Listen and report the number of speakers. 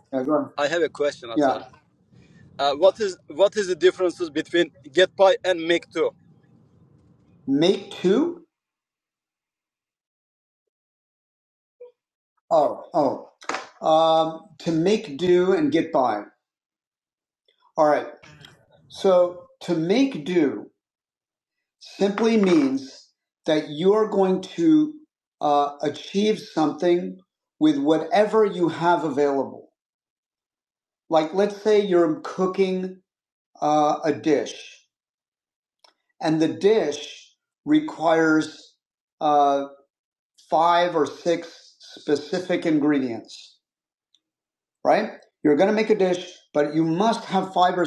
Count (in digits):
2